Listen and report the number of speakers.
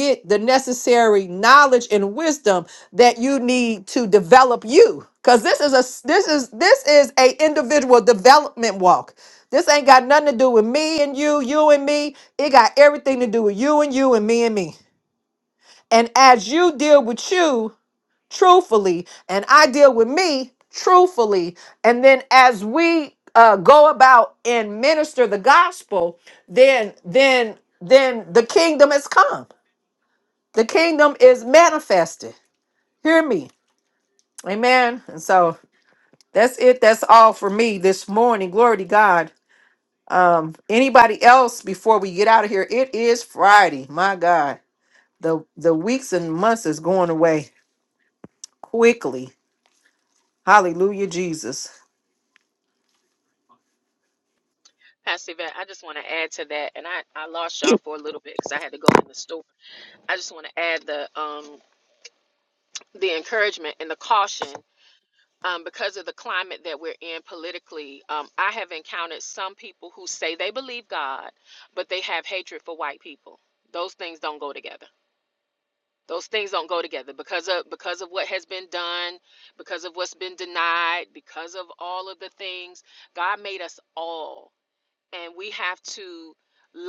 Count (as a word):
two